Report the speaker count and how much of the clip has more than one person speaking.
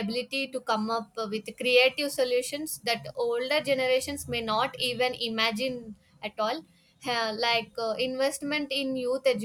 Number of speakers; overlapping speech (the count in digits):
1, no overlap